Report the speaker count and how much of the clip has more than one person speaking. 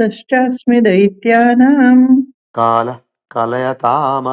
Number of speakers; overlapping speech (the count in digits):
2, no overlap